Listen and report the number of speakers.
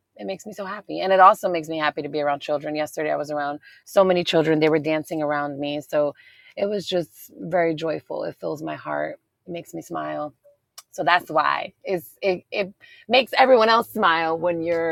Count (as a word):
one